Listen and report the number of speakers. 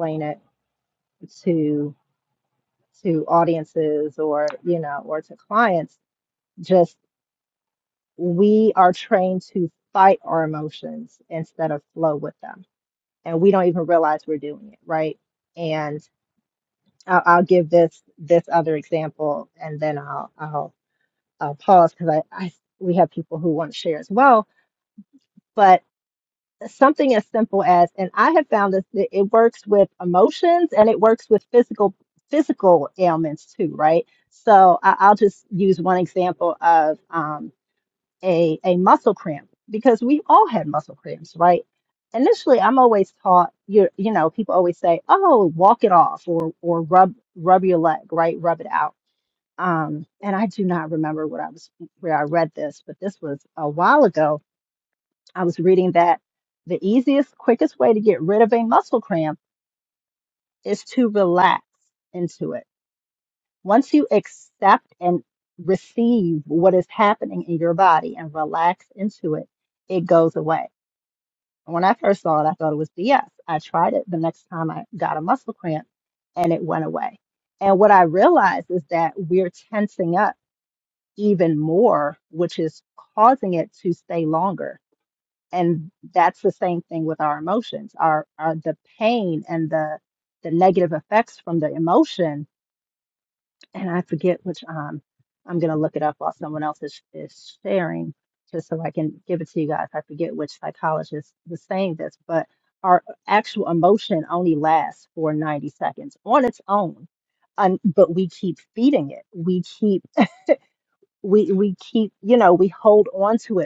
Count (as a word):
one